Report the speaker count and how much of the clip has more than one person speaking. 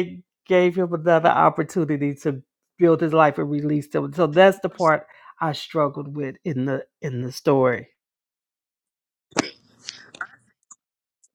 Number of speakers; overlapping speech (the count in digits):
1, no overlap